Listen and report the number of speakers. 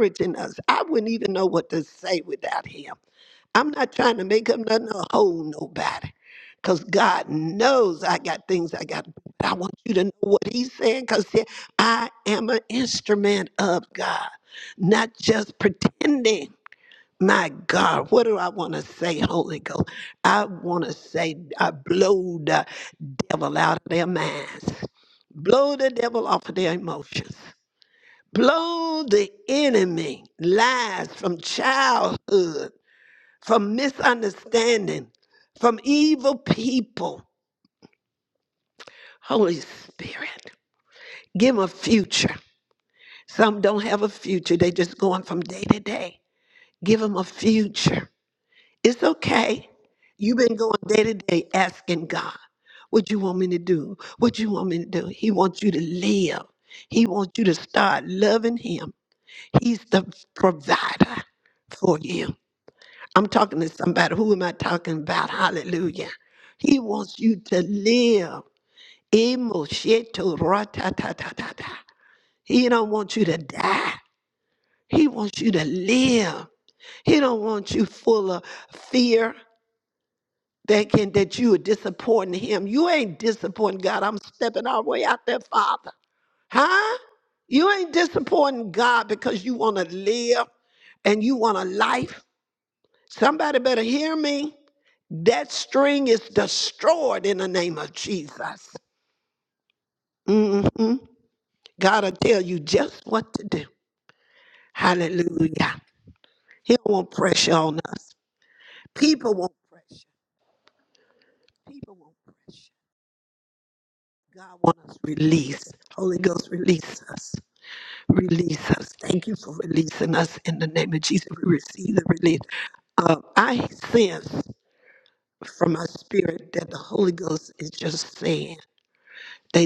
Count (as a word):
one